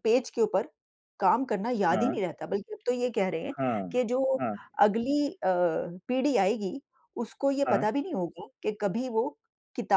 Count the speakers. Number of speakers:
two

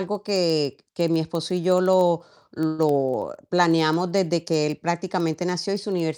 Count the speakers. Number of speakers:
one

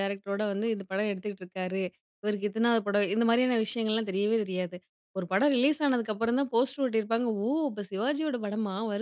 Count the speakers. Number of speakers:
one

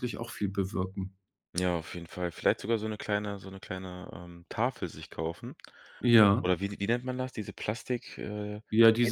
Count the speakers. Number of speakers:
two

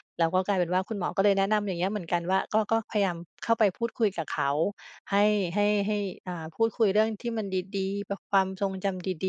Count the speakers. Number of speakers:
one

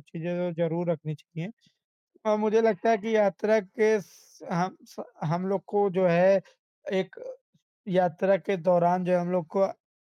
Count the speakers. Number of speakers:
one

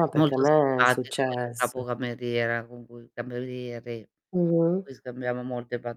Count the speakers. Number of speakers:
two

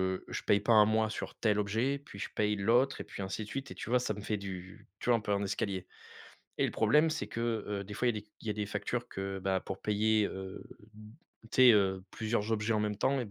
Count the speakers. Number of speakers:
one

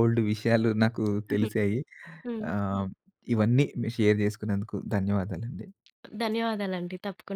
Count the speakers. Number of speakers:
two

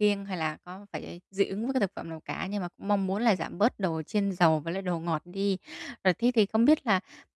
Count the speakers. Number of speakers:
one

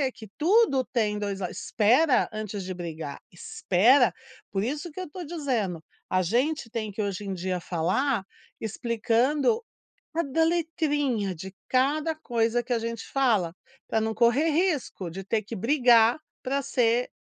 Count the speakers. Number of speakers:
one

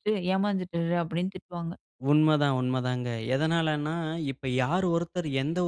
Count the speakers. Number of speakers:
two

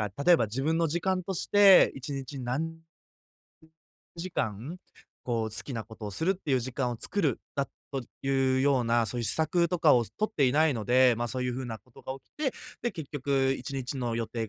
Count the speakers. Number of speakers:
one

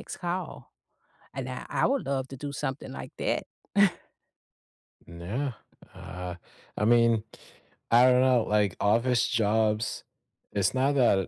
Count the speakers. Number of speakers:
two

